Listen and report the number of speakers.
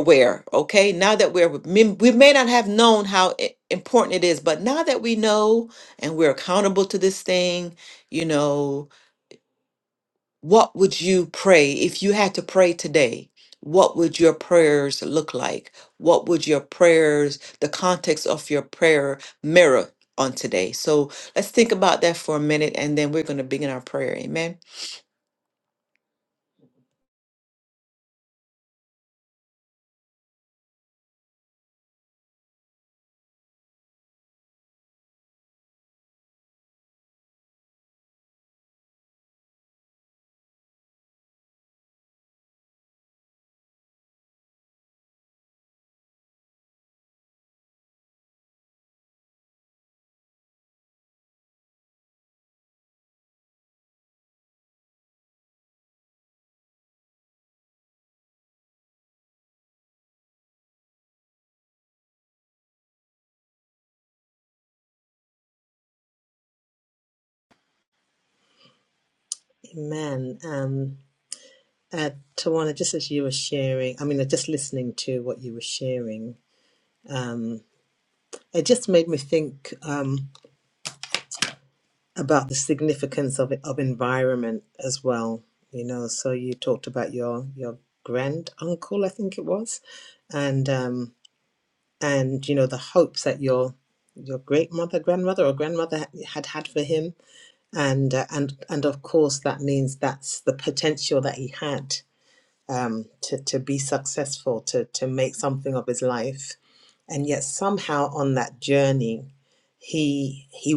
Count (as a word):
two